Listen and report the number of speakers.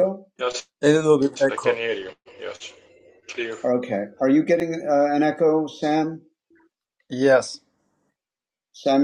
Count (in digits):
3